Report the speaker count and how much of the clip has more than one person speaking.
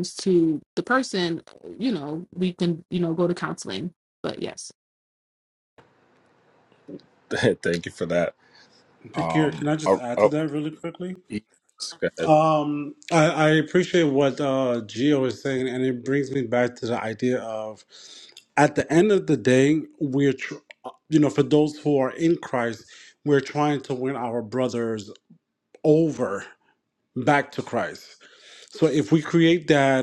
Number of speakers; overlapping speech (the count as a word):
three, about 4%